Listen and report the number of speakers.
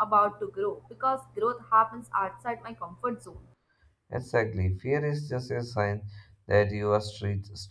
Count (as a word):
two